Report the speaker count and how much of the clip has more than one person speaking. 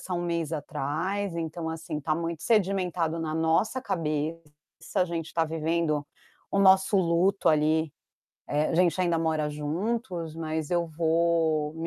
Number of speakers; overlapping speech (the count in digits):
1, no overlap